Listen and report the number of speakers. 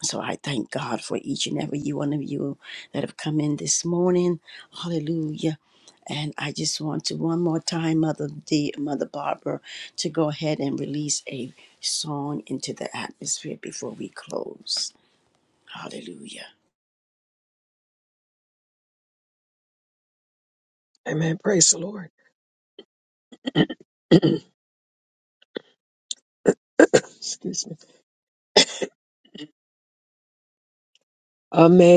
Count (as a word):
two